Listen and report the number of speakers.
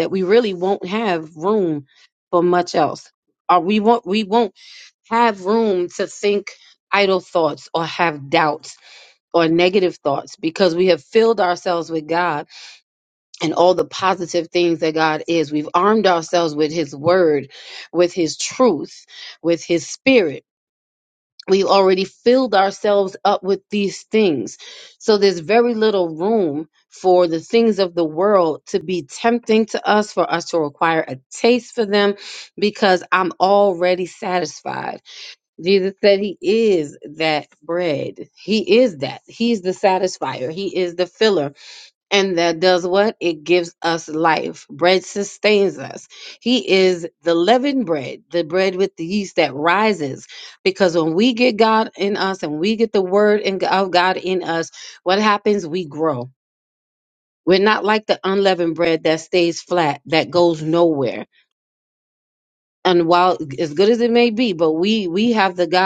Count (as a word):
one